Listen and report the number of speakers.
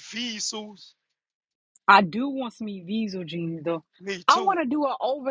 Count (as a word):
two